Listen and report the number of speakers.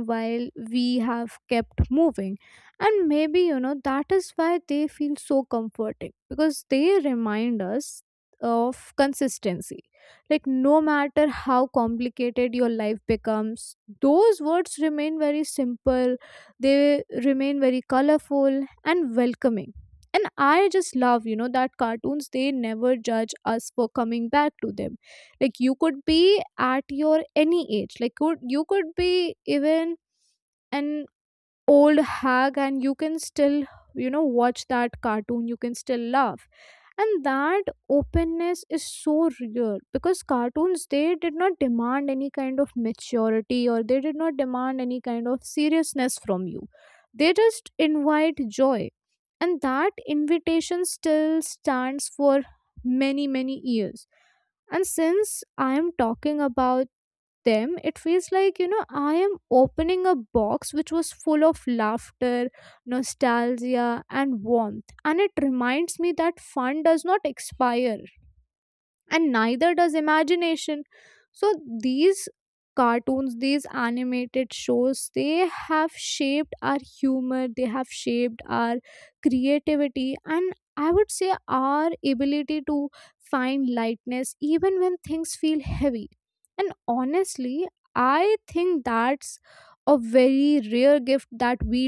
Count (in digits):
1